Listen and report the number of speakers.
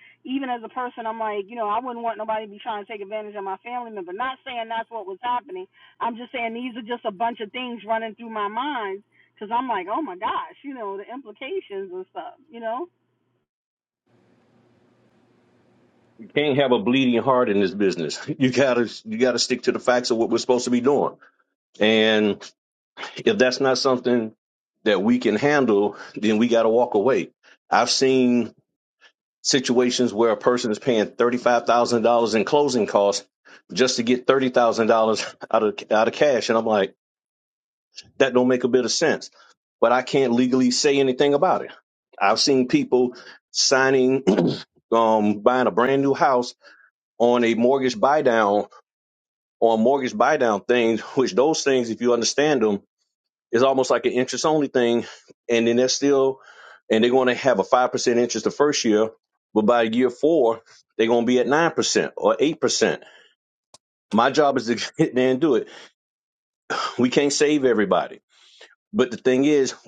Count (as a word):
two